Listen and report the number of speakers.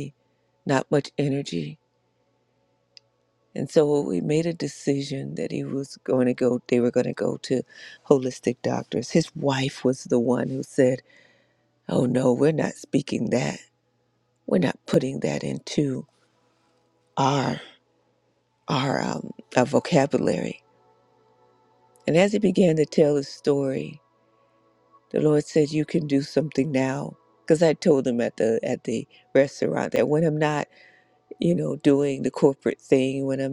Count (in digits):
1